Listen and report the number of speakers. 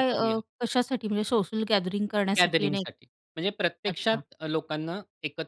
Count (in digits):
2